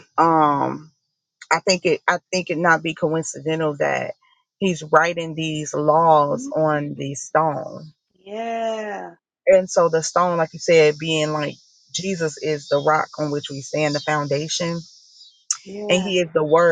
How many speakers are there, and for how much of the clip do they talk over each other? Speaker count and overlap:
two, about 6%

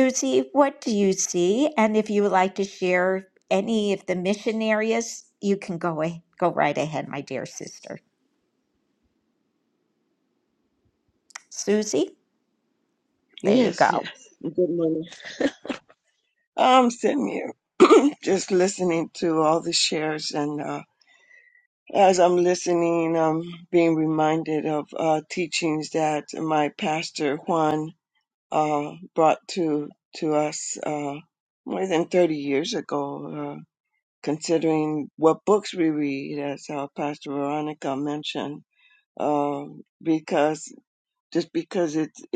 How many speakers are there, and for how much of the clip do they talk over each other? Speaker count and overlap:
two, about 1%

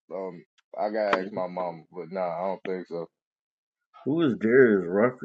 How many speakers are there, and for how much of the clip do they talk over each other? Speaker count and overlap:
two, no overlap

